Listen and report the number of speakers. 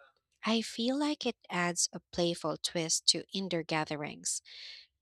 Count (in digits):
1